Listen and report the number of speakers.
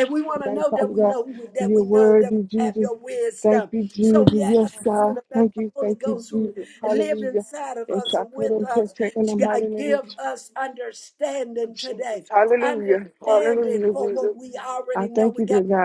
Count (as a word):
two